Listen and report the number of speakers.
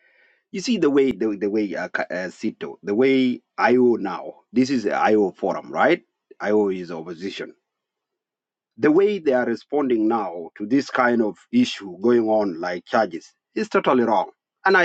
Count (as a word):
one